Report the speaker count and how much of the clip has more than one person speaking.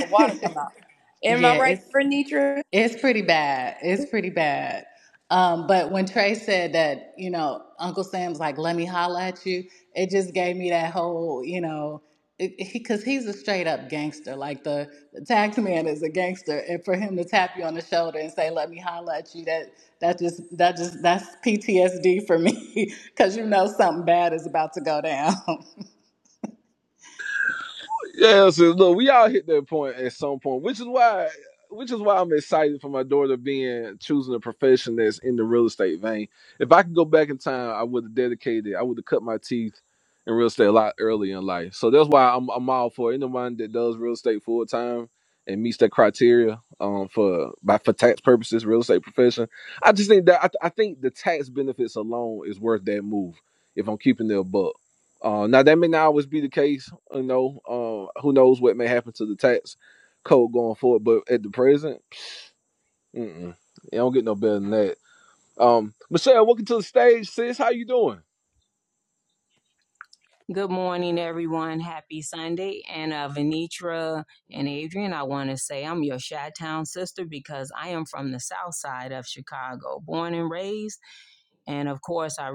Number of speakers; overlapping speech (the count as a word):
four, about 1%